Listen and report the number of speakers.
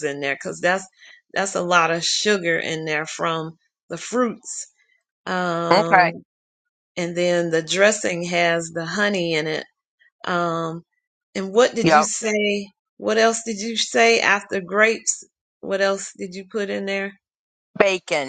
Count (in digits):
2